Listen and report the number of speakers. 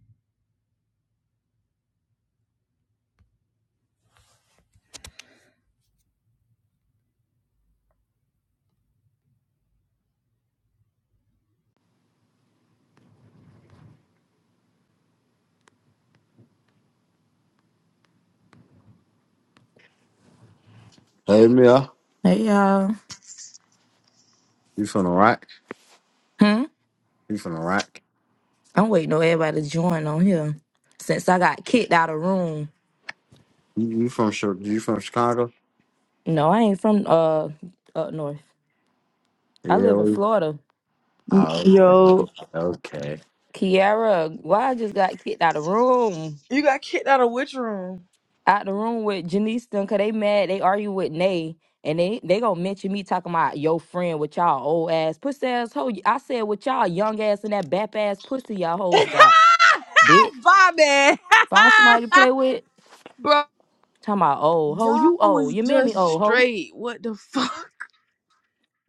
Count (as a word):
three